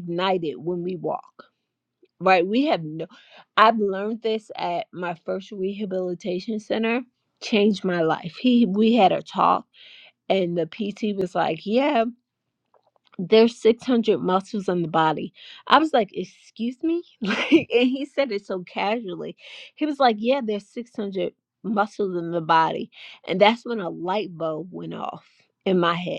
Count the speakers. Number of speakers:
one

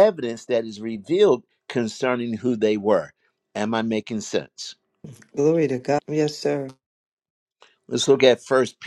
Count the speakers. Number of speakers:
two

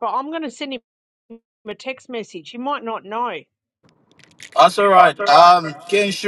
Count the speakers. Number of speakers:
two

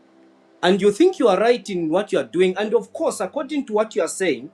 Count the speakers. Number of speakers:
one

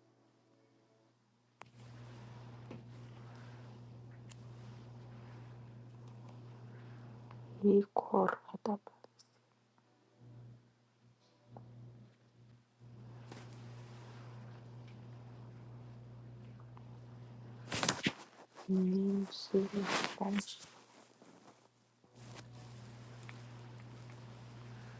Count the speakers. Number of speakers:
one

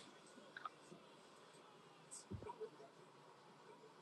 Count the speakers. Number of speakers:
zero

